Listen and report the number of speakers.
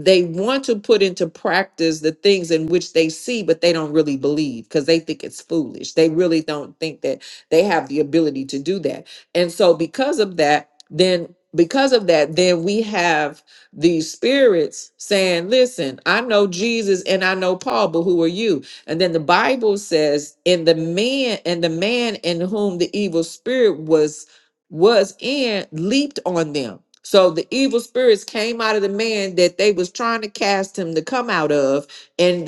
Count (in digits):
1